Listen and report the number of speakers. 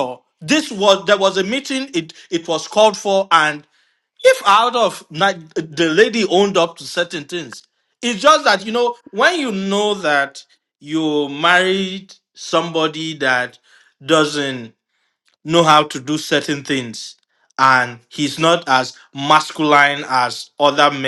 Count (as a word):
one